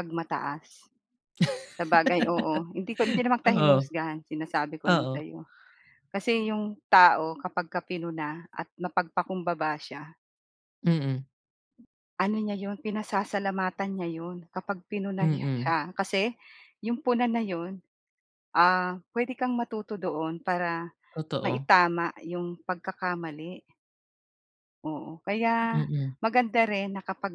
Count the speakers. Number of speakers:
two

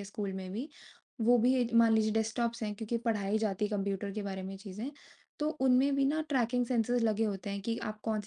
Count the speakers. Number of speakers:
one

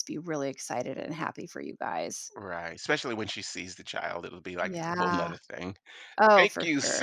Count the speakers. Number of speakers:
two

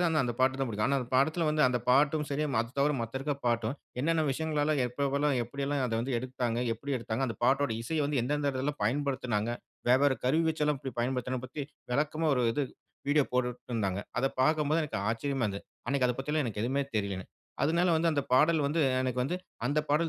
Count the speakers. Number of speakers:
one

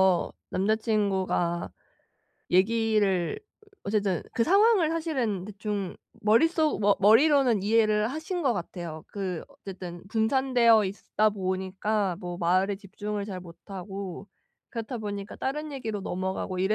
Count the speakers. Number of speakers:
one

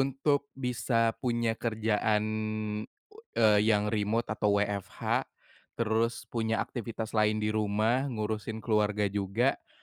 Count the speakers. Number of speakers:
one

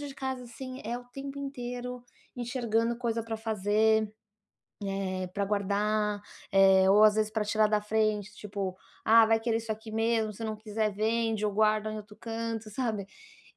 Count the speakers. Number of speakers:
one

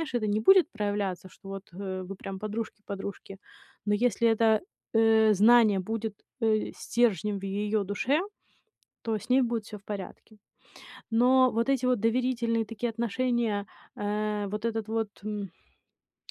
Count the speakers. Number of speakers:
one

